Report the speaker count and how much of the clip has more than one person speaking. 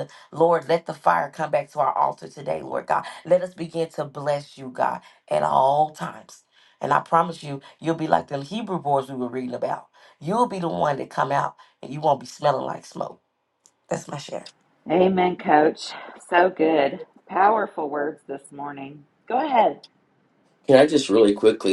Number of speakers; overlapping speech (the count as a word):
three, no overlap